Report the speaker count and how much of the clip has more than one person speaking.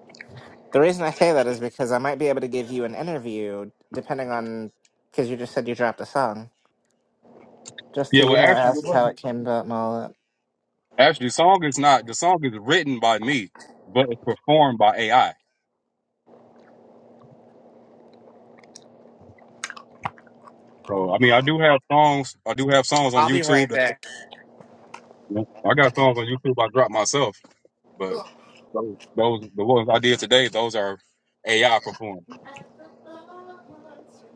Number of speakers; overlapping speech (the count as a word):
two, about 5%